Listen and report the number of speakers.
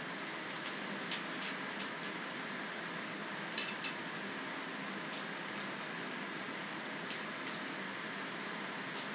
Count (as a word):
zero